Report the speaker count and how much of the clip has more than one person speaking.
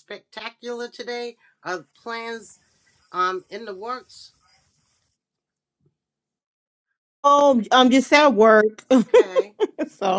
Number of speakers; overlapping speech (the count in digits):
2, no overlap